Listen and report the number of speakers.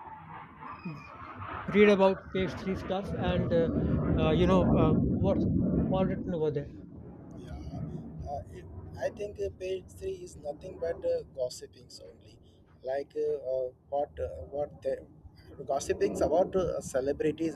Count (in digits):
2